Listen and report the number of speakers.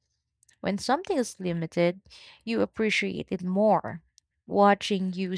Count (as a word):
one